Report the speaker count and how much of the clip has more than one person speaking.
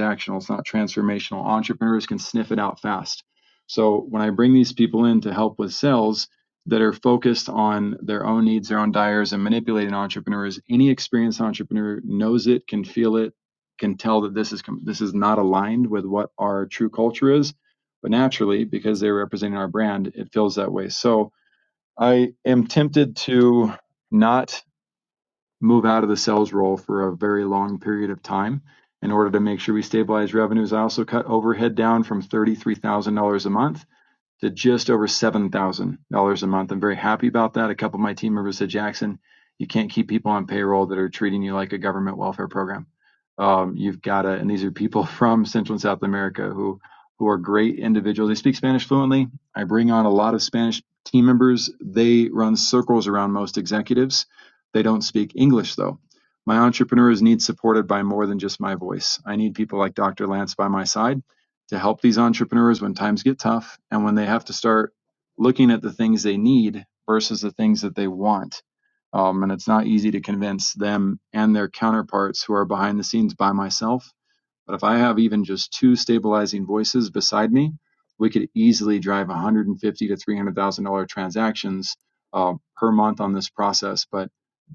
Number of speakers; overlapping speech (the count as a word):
one, no overlap